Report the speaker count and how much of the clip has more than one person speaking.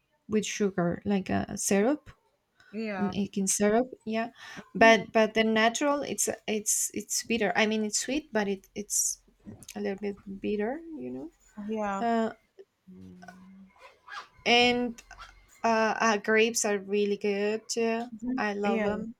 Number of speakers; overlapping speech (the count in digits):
2, about 3%